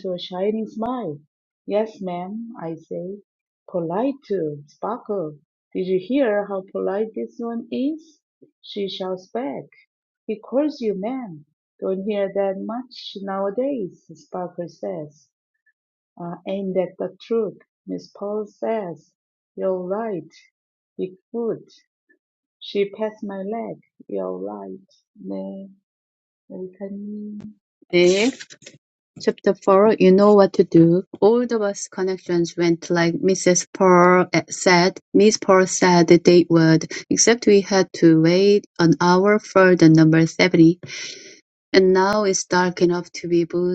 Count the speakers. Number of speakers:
two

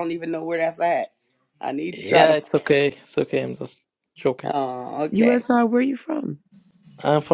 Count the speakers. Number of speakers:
three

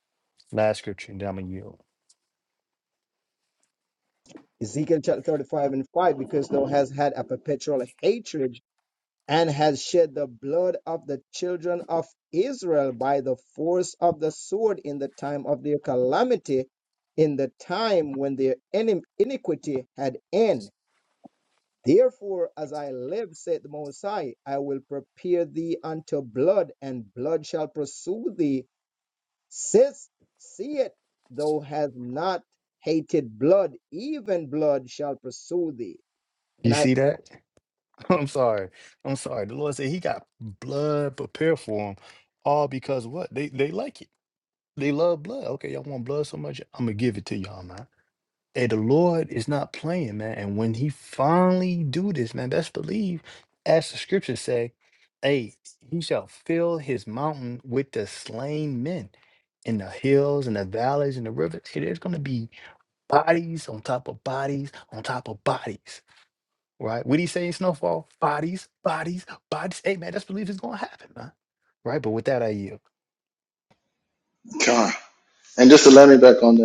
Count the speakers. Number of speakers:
three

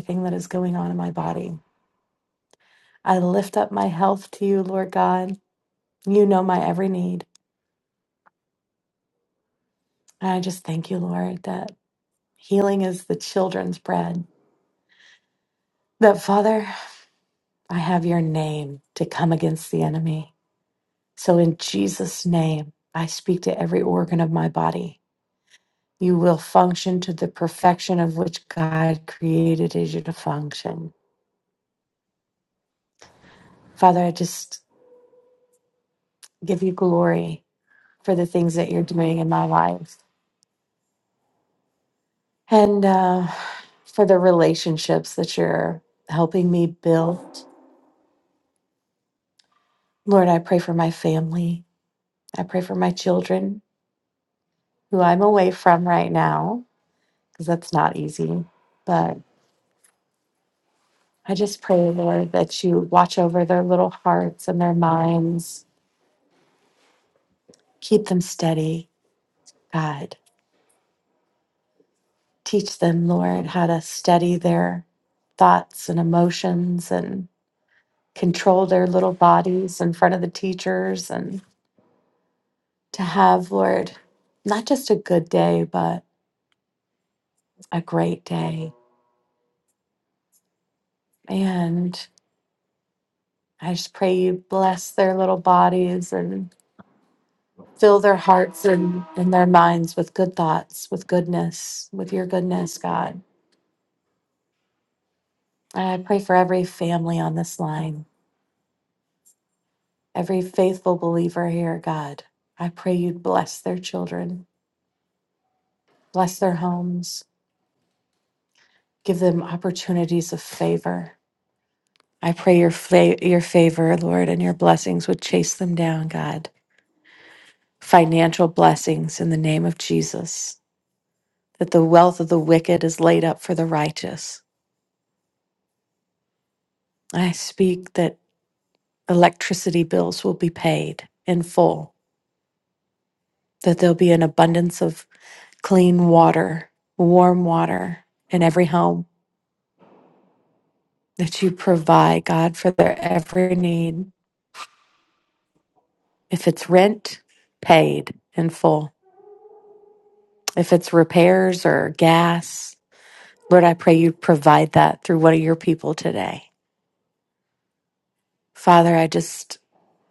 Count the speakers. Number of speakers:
one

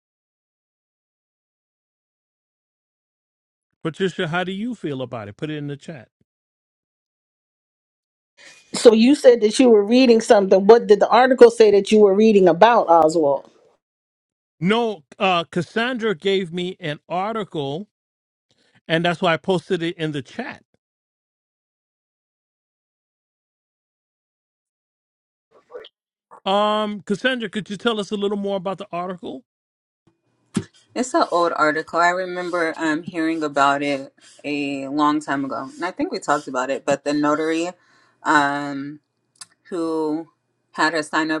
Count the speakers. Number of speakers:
three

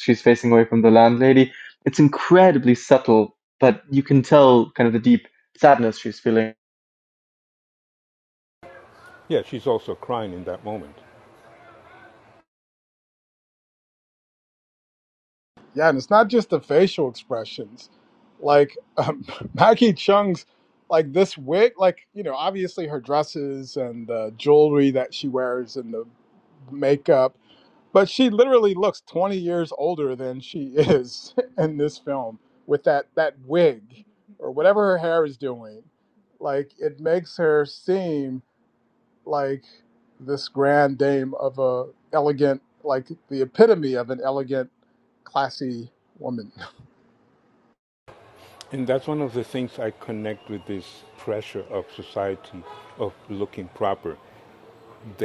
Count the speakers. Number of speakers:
three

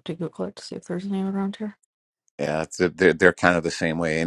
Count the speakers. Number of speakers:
two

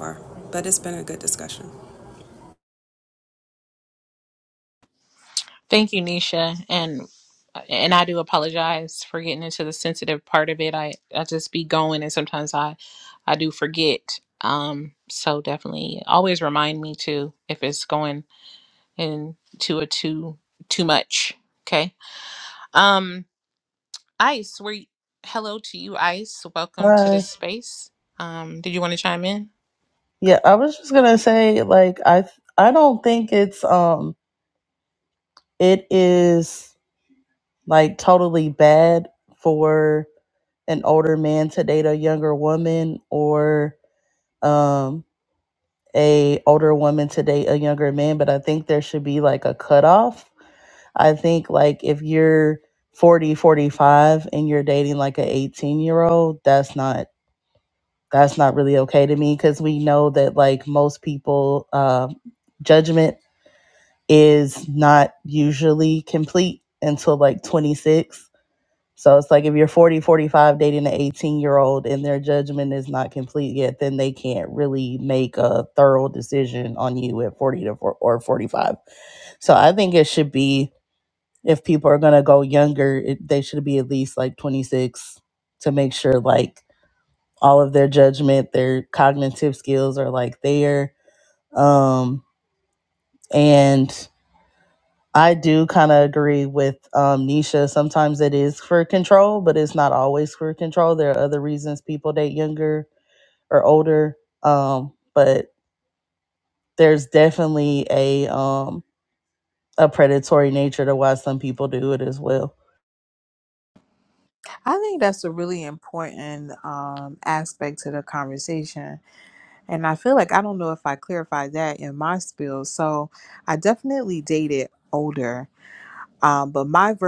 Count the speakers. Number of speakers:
four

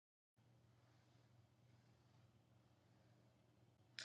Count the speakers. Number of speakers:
zero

